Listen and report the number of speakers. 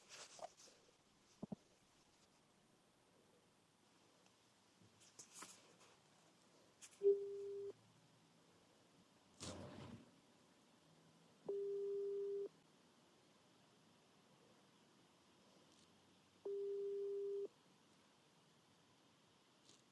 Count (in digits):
0